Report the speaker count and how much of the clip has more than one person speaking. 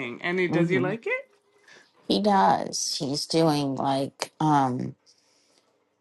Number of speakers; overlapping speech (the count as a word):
two, about 7%